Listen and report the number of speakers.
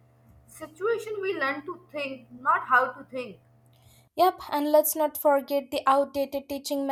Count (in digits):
2